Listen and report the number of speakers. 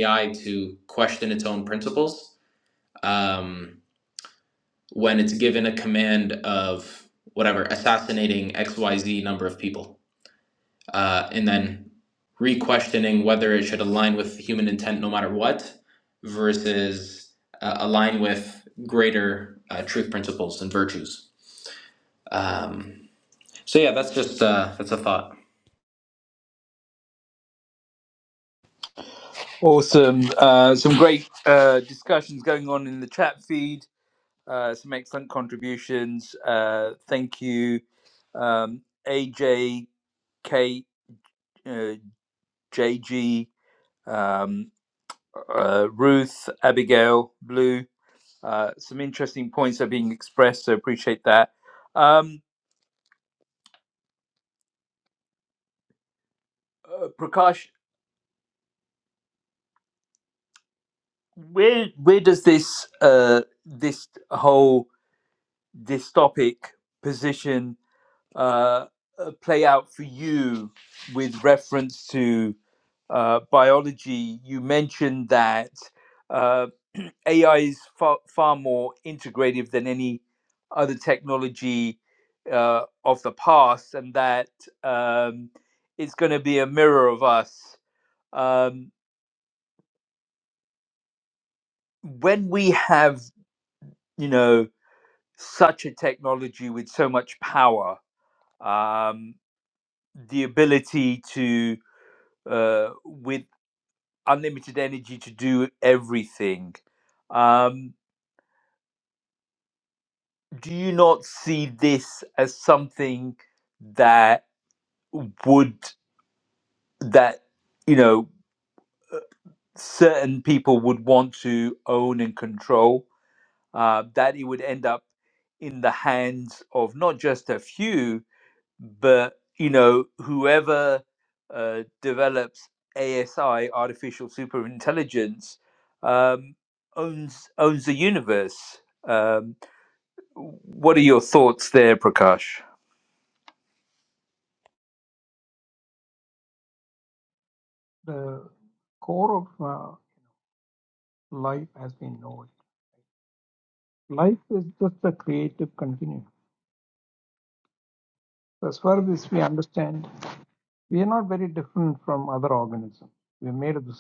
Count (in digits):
3